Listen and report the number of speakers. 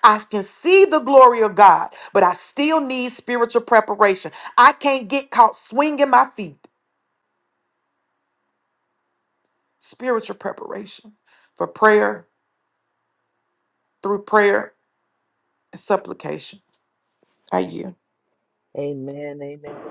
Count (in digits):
2